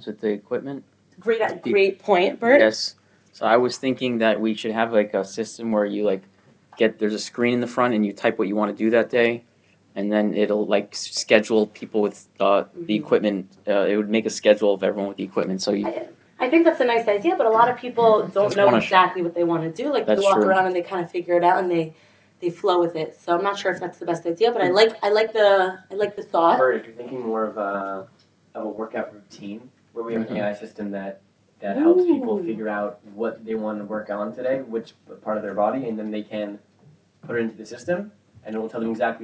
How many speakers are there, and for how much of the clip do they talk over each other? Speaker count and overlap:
three, about 7%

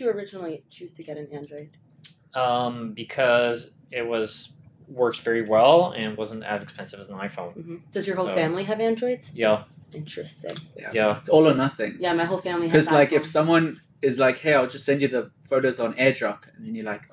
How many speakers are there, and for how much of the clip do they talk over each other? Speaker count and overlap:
three, about 6%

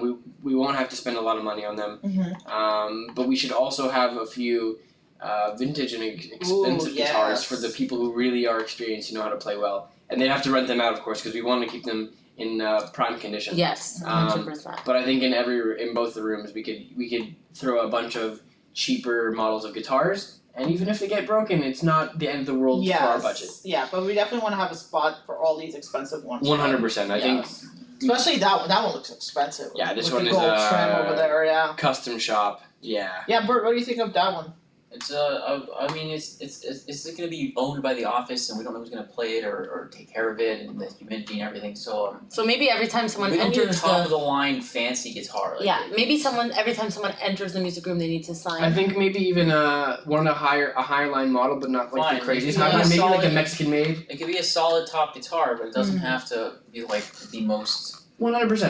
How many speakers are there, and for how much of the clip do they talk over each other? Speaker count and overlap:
four, about 13%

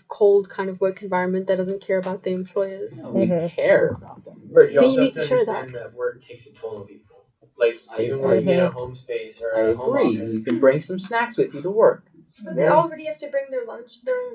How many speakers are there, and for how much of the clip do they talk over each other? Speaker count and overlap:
four, about 22%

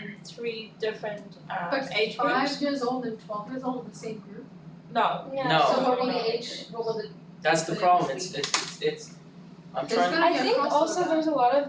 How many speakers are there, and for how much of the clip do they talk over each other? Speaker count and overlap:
four, about 37%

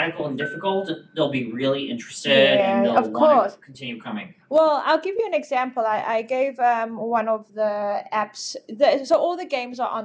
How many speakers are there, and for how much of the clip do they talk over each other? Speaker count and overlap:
two, about 13%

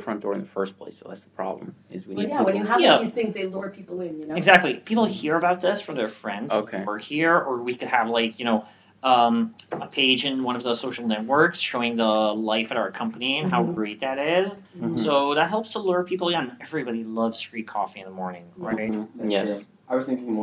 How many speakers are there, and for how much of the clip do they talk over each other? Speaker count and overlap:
four, about 15%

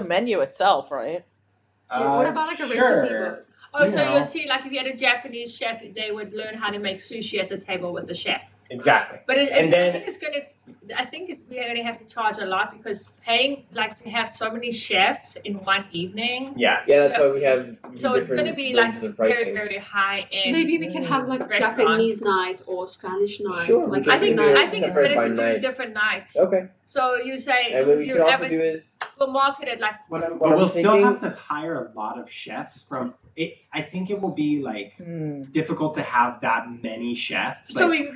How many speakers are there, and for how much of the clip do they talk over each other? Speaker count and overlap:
five, about 28%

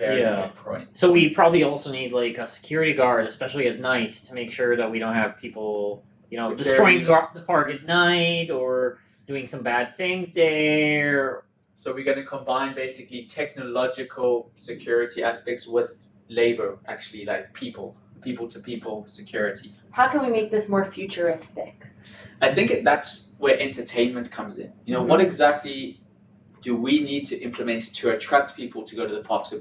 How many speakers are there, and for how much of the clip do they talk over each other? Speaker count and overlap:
three, about 5%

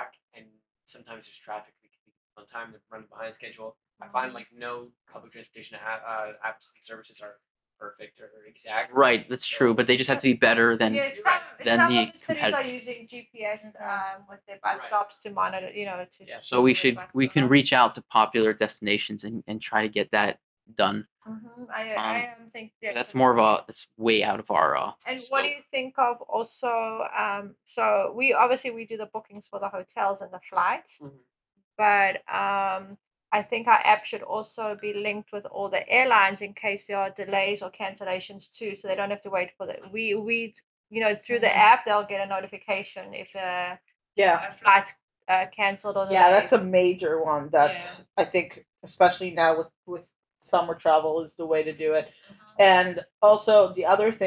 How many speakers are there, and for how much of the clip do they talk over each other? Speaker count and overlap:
four, about 14%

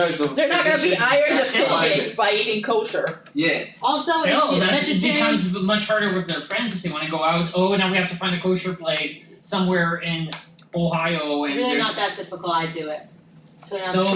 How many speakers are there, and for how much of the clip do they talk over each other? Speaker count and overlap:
four, about 30%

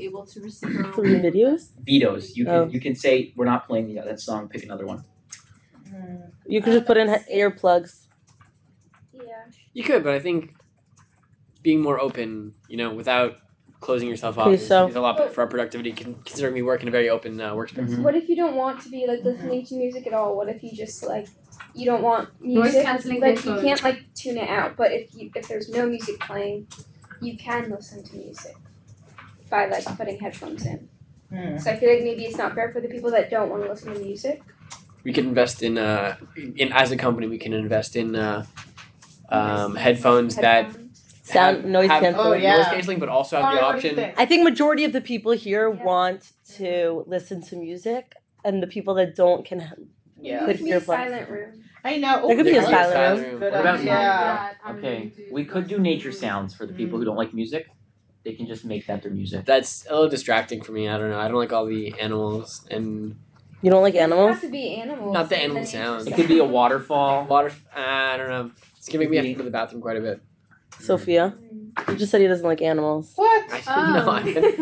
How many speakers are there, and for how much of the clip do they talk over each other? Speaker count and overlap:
six, about 23%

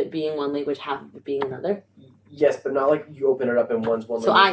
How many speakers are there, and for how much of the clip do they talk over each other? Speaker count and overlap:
two, about 7%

